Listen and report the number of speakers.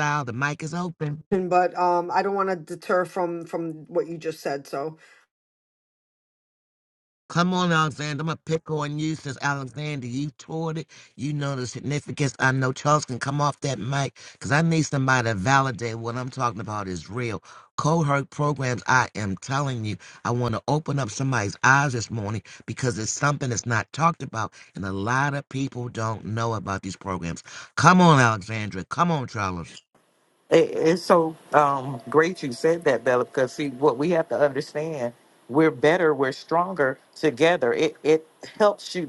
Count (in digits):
3